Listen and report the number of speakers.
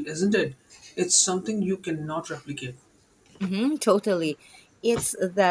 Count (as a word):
two